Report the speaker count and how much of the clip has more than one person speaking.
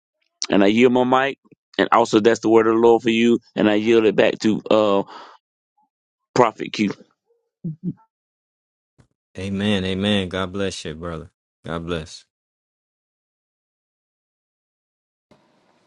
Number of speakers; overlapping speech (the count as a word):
two, no overlap